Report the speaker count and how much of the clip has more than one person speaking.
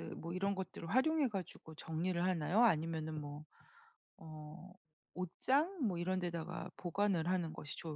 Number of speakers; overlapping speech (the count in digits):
1, no overlap